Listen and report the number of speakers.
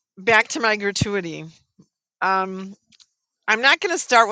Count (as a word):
one